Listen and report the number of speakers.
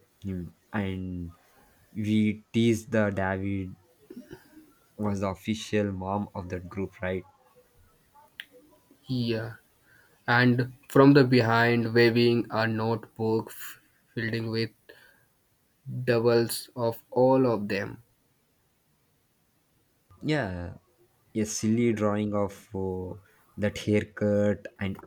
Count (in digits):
2